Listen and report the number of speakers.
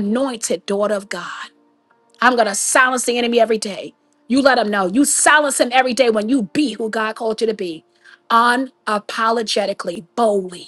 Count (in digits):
1